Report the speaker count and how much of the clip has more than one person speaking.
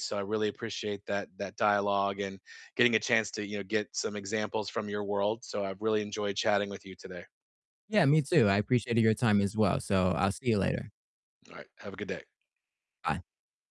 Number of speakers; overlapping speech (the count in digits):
2, no overlap